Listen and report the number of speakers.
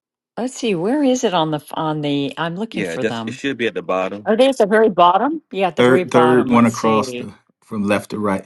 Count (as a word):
three